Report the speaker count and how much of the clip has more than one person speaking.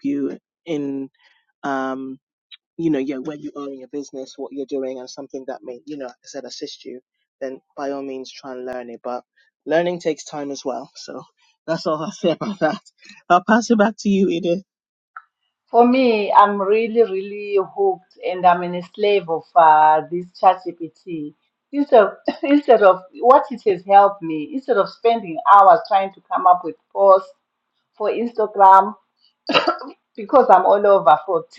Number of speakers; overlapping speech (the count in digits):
2, no overlap